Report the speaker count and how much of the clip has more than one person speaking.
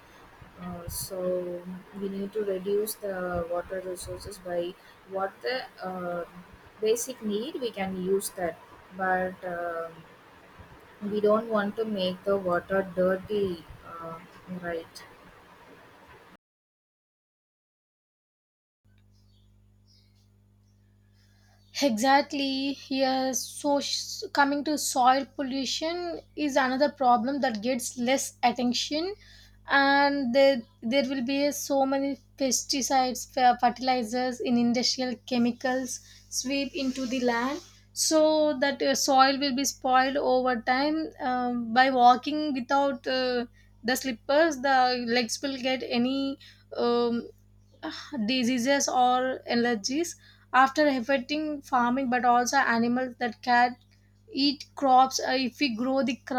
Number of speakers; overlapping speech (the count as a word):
two, no overlap